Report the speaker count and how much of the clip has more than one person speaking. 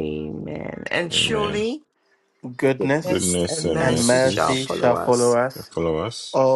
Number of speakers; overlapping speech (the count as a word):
three, about 44%